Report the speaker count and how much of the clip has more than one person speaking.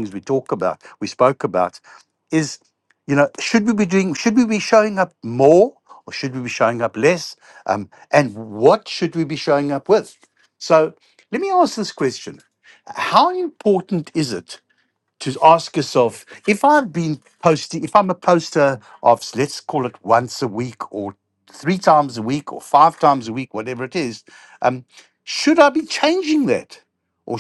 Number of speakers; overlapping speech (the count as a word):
one, no overlap